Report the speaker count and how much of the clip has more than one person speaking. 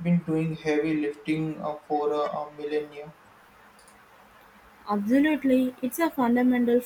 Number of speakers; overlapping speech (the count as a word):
two, no overlap